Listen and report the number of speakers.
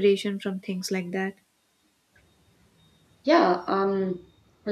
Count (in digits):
2